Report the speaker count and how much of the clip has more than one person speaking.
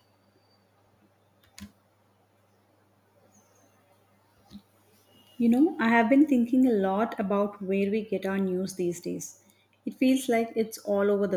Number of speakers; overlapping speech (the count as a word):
one, no overlap